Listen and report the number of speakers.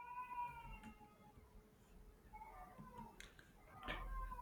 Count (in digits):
0